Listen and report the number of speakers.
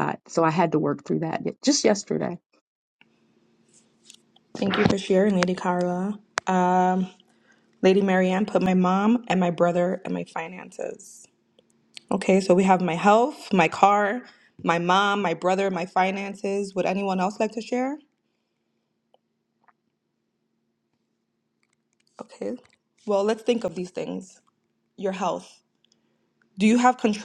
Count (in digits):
2